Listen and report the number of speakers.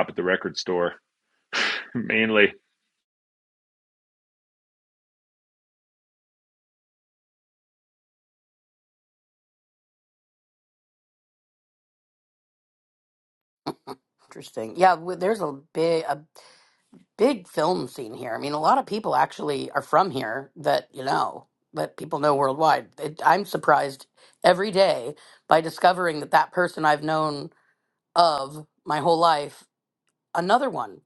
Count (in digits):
2